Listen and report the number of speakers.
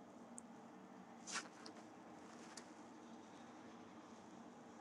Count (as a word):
zero